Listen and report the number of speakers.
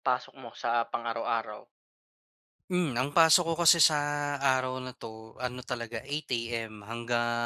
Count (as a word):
two